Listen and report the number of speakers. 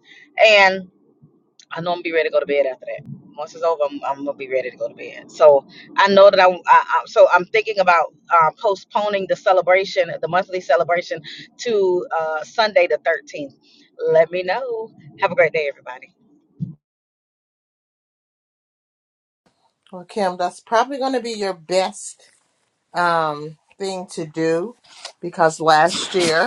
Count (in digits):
2